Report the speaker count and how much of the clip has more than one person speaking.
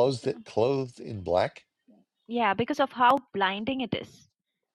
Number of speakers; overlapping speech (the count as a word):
two, no overlap